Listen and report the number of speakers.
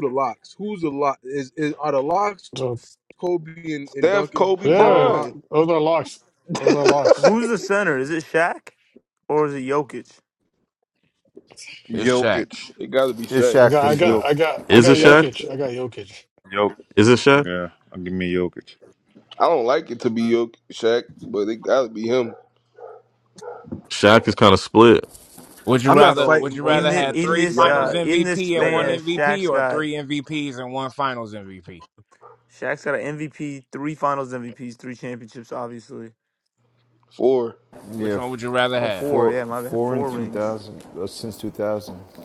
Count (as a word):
eight